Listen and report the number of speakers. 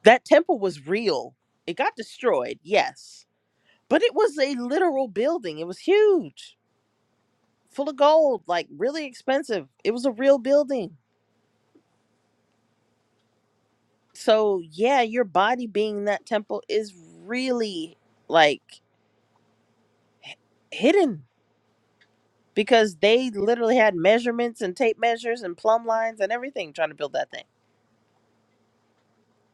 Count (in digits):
1